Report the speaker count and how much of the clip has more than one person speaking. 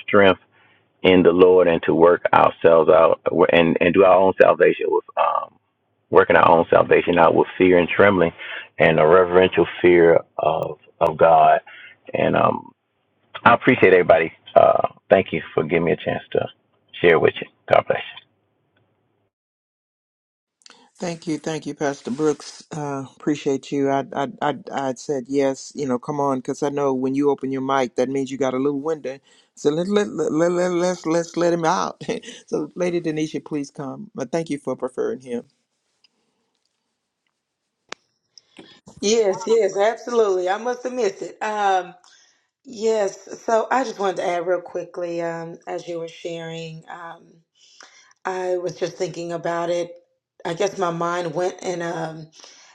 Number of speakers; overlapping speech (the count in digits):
3, no overlap